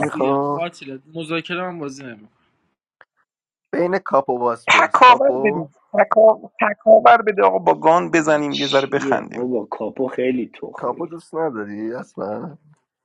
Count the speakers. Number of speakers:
four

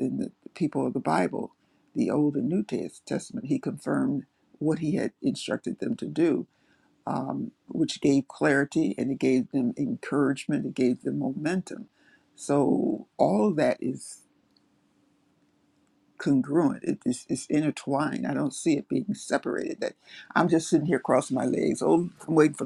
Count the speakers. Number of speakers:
one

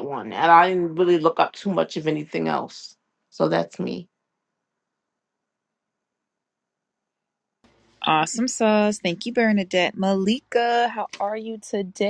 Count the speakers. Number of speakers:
two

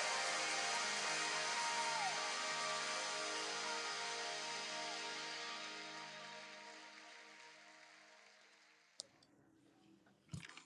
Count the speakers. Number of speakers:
zero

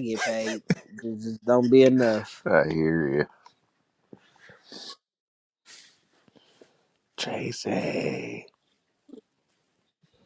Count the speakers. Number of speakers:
two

